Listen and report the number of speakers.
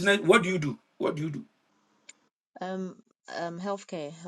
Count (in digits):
2